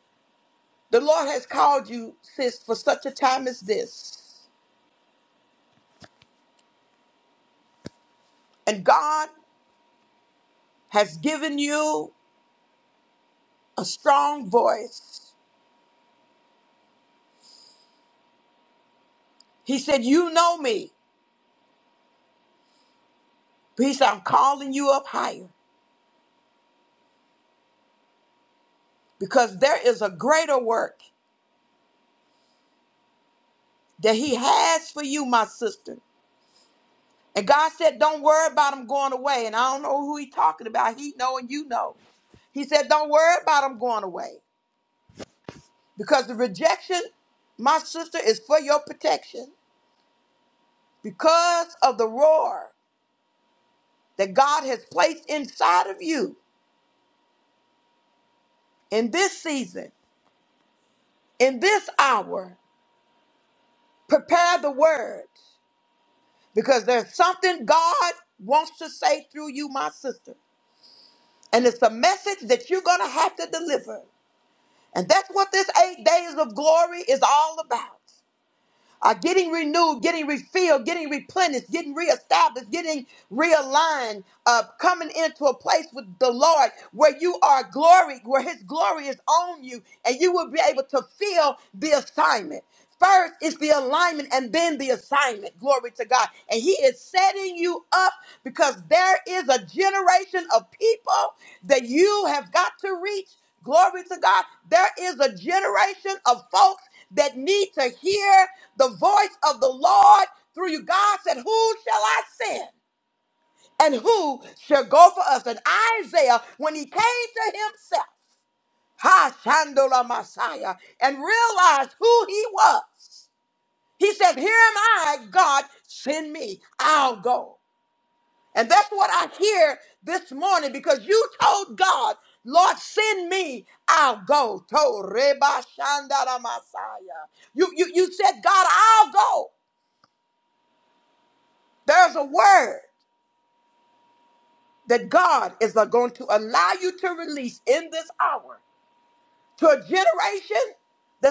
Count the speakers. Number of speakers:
one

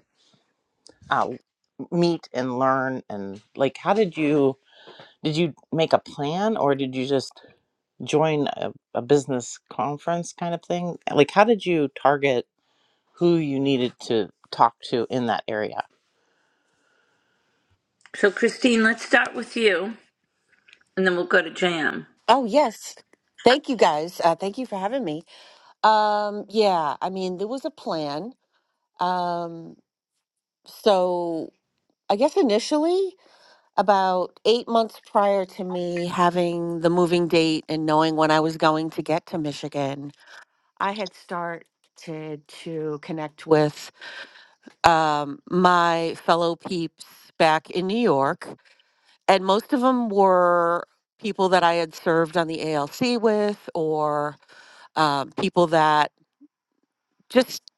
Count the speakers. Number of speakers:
three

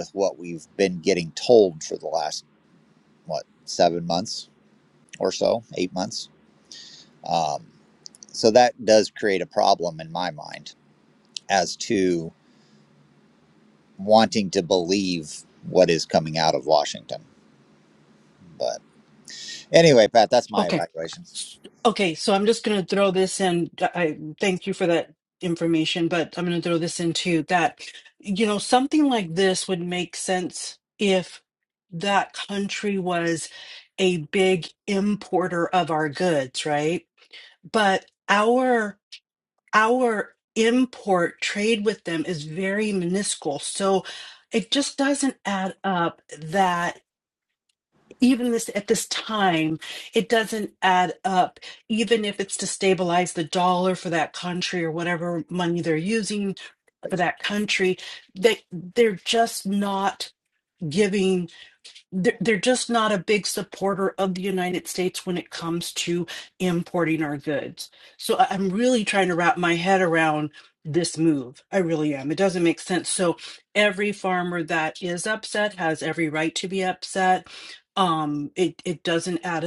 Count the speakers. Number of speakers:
two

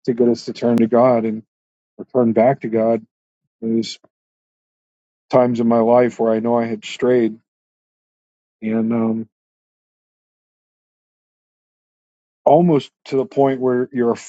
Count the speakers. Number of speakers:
one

